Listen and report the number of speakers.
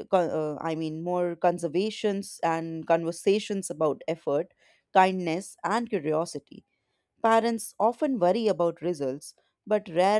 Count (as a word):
one